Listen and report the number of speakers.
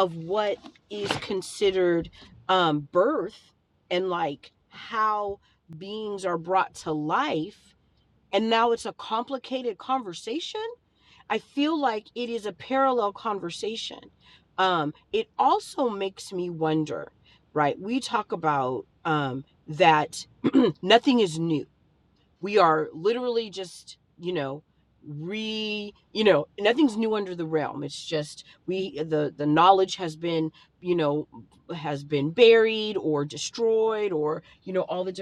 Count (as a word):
one